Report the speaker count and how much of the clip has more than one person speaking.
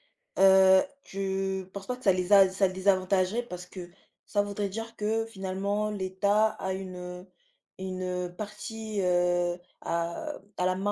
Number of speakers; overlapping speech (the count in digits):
1, no overlap